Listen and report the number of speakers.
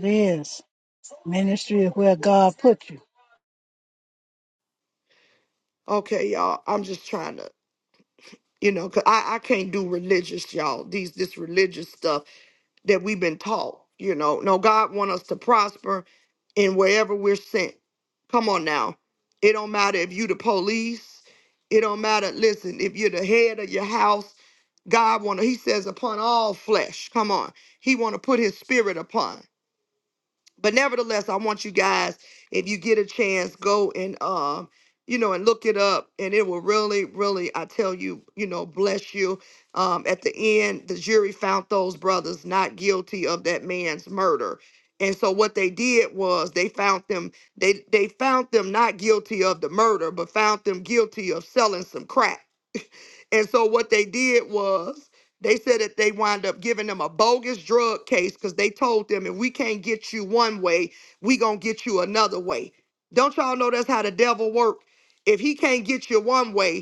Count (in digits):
2